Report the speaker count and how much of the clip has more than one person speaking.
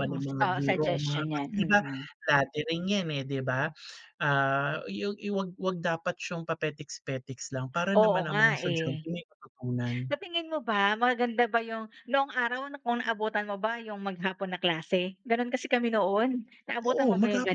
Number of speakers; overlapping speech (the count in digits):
2, about 21%